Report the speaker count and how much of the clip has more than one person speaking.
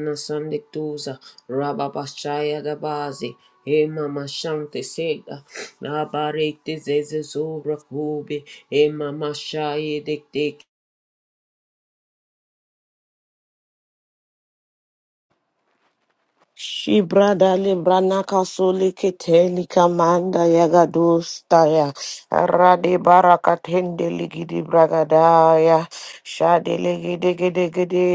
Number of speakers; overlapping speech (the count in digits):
2, no overlap